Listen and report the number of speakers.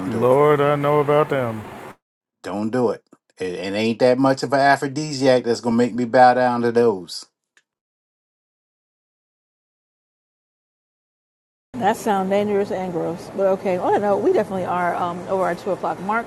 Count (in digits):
3